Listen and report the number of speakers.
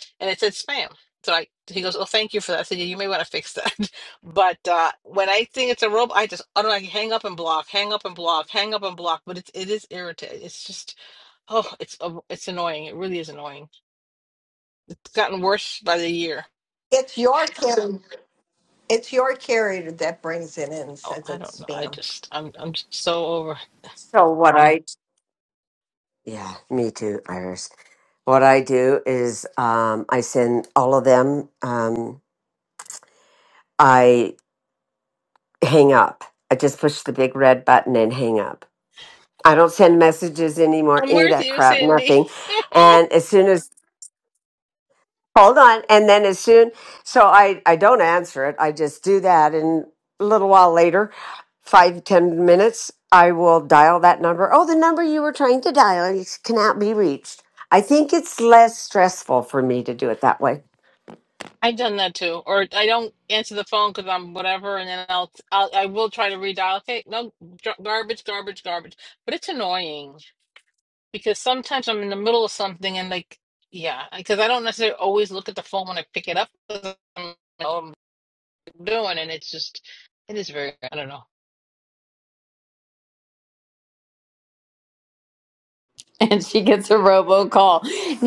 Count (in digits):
4